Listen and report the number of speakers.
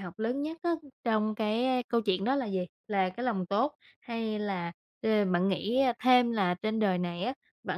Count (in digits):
1